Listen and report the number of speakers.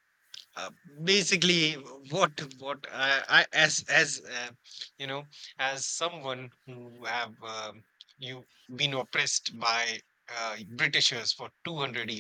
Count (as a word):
one